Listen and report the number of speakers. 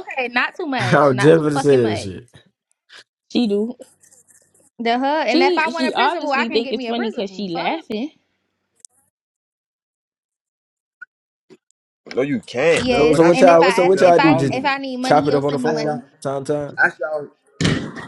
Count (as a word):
four